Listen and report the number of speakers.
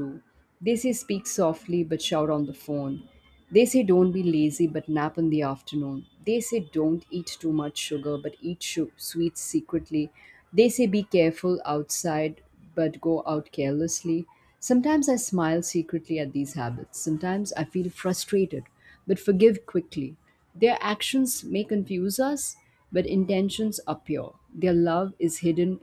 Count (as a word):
one